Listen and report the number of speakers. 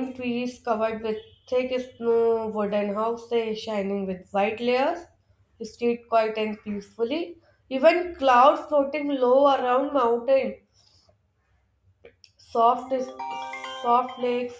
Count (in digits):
1